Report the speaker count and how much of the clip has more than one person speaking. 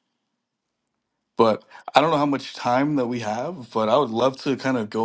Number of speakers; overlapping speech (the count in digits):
1, no overlap